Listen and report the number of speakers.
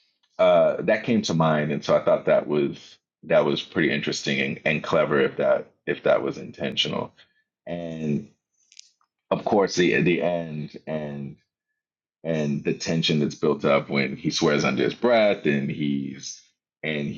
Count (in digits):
1